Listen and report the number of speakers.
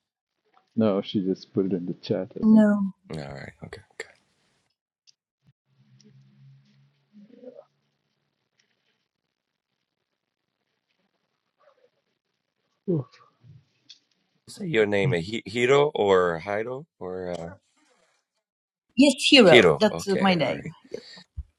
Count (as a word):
three